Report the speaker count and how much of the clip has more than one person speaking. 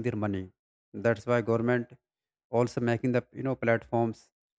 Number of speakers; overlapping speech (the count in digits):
1, no overlap